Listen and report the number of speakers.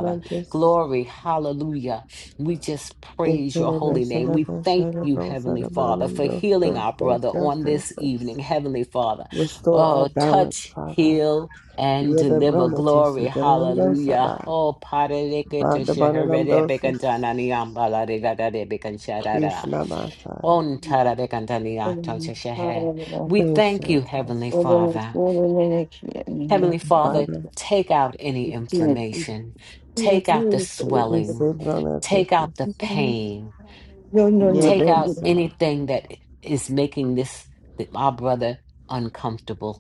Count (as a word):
three